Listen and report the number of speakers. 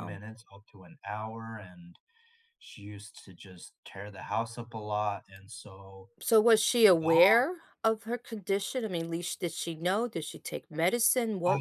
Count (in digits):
2